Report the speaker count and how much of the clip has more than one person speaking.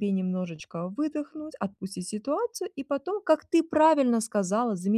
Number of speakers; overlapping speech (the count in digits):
1, no overlap